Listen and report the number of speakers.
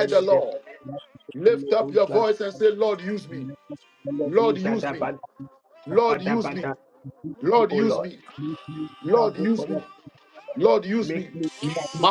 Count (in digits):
2